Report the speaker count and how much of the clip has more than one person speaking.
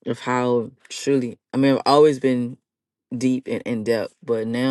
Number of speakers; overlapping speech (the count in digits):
1, no overlap